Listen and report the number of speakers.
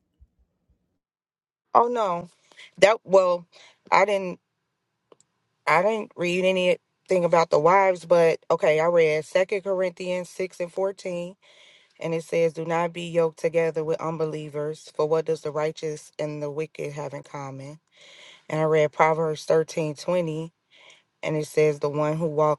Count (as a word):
one